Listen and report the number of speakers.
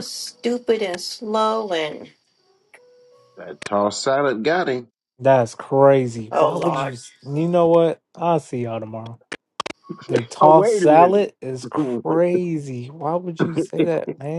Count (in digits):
3